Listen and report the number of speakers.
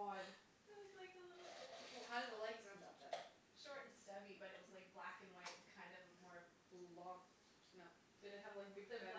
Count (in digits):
3